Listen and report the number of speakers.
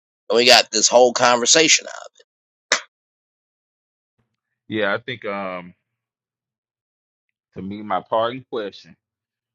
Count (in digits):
2